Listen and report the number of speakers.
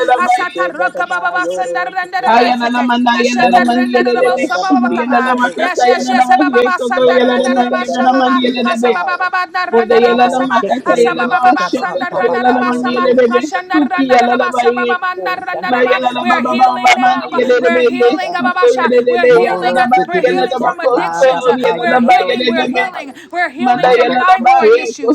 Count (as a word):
three